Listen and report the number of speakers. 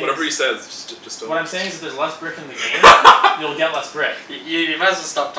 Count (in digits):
3